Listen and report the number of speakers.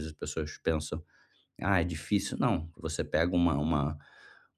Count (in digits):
1